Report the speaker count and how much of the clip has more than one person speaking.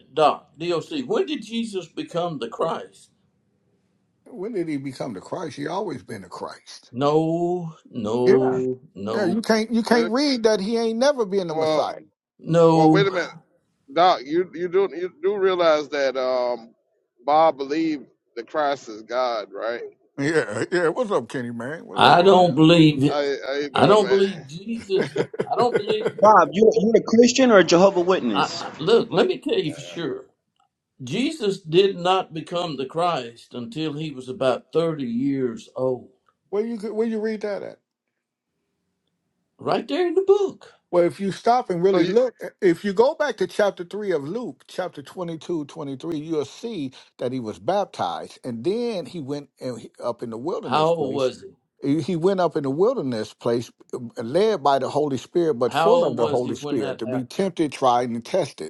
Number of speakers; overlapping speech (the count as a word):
four, about 10%